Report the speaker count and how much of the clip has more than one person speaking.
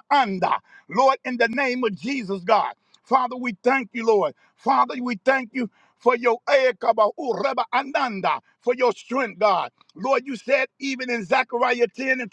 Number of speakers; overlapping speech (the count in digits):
1, no overlap